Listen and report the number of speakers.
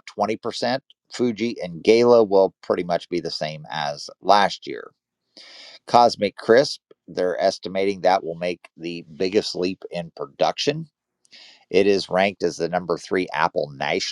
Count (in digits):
1